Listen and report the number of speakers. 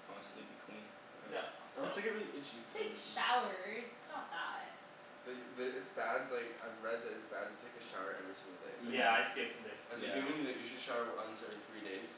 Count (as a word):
four